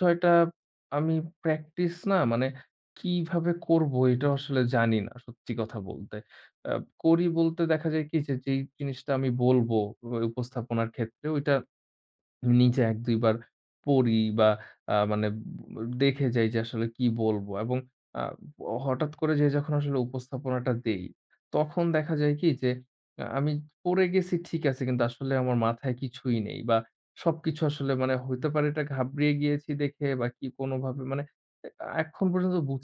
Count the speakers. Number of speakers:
1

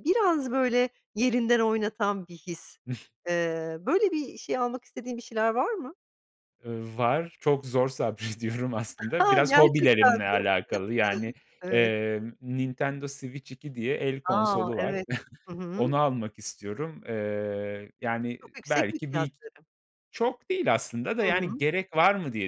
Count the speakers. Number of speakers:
2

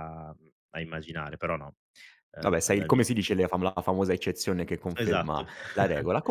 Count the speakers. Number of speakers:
2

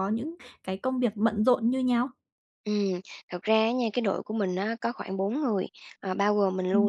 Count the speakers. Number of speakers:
2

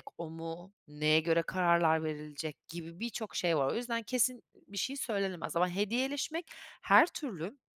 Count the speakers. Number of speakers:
1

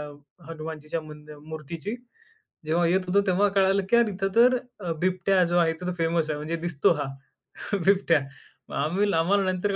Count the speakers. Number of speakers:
1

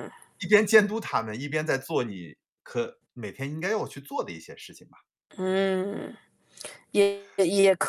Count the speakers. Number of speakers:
2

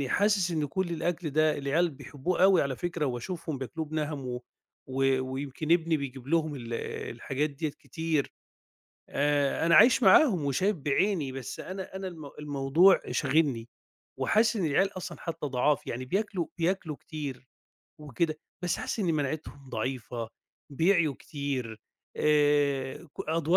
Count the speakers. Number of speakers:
1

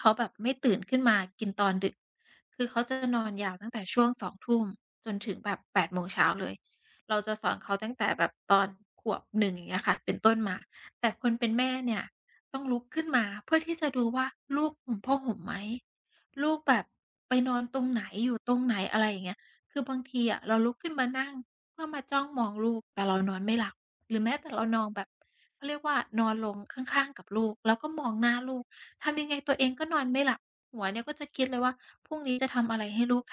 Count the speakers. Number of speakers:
1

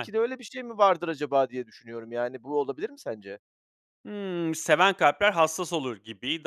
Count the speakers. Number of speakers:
2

